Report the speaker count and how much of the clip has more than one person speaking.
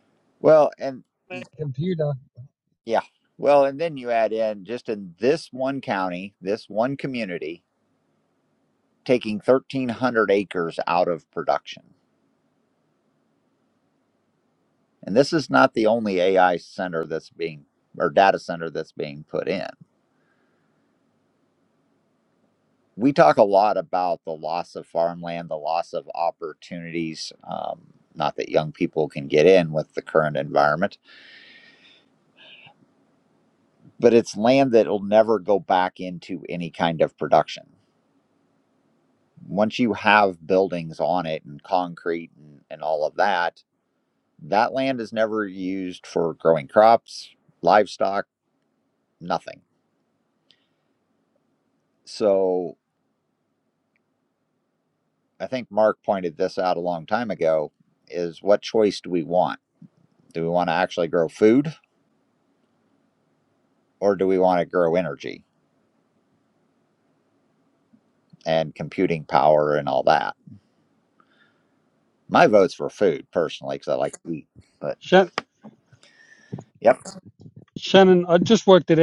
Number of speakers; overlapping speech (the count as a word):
two, no overlap